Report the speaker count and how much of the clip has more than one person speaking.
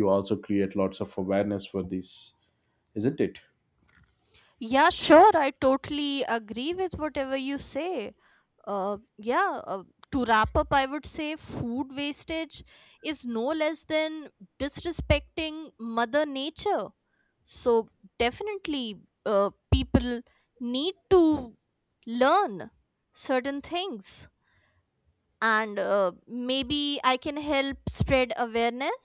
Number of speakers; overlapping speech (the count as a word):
two, no overlap